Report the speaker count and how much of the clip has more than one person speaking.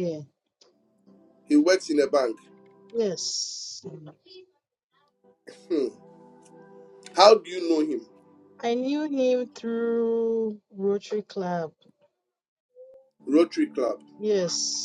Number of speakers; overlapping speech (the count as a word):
two, no overlap